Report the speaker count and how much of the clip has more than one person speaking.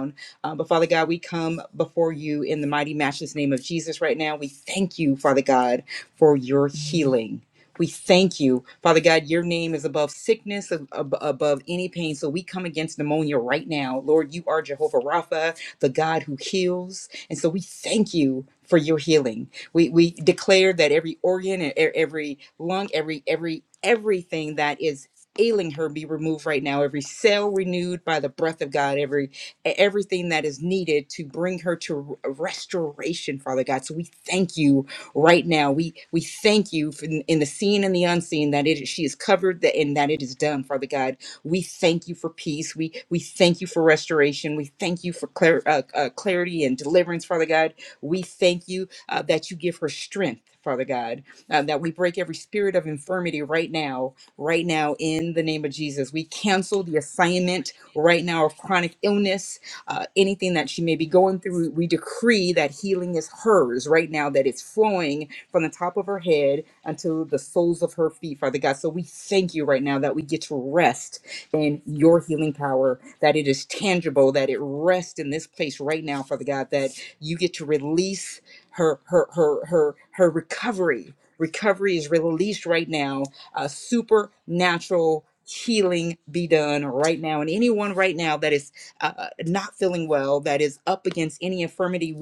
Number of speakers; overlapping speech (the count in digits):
1, no overlap